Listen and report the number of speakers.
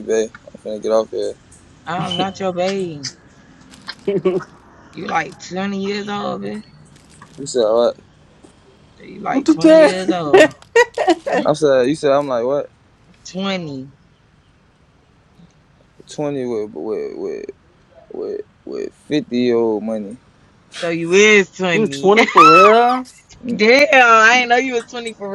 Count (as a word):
three